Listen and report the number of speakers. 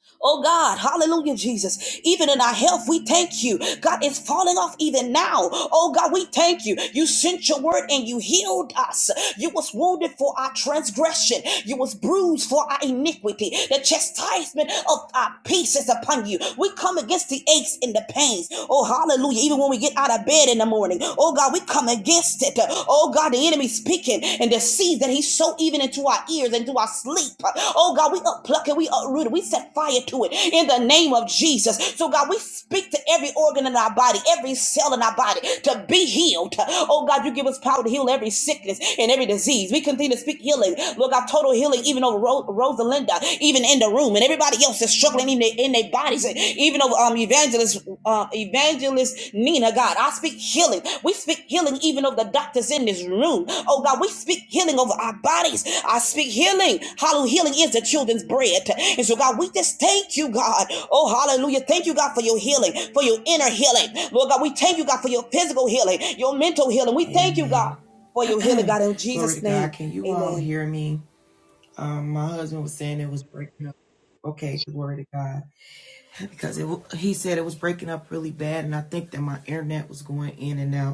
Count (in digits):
2